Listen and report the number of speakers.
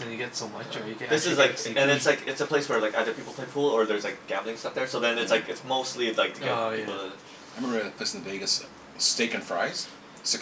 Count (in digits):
3